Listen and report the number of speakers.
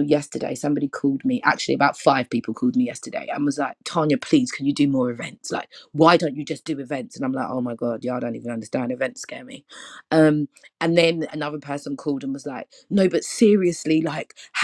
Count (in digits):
1